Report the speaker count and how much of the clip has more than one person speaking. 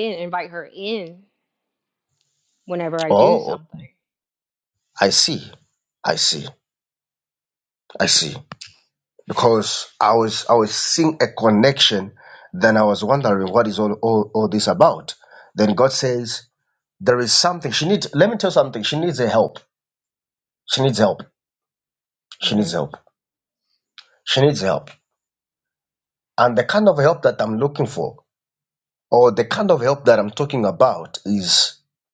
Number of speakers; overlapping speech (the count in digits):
2, about 2%